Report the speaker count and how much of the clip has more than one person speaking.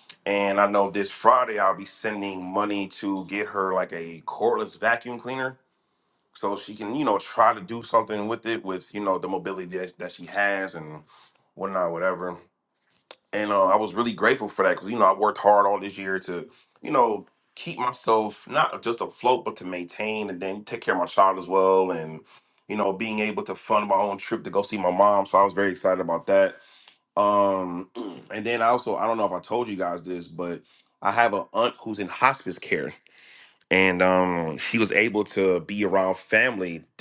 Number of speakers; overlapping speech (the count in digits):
1, no overlap